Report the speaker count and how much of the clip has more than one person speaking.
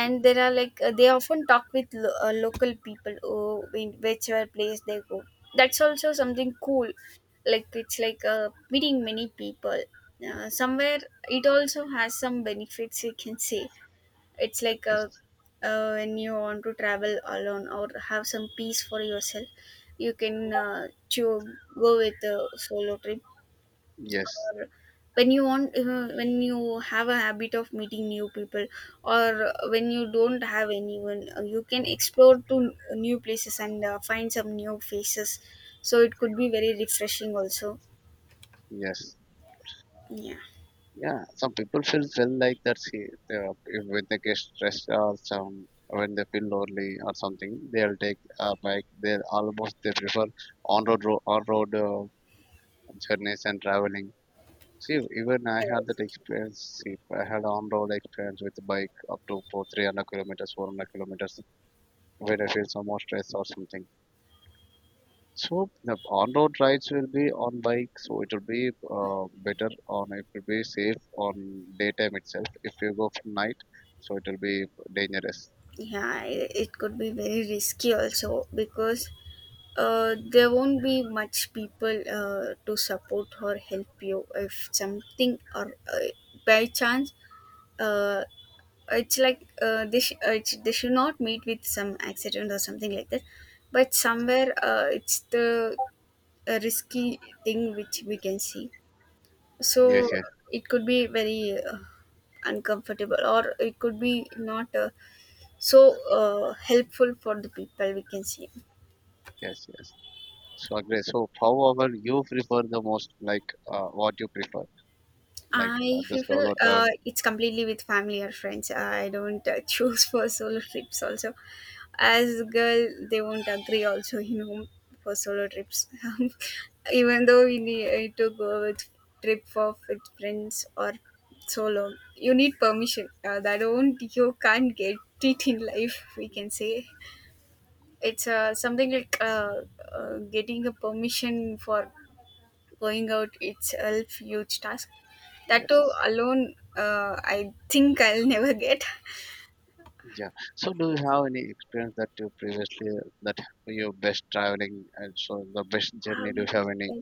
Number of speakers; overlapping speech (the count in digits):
2, about 2%